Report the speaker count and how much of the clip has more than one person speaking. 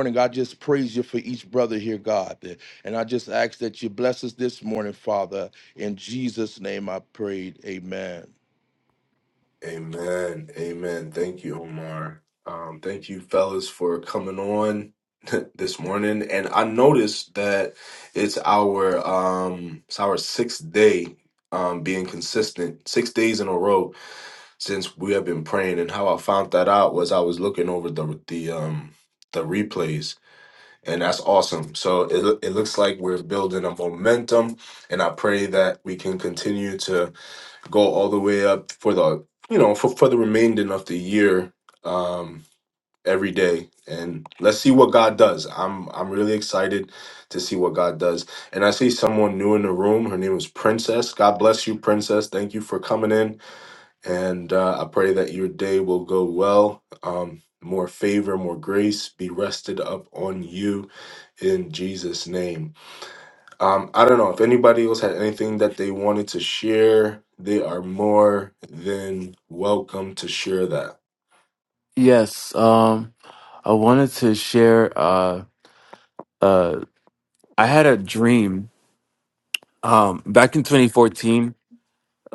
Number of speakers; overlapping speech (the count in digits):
3, no overlap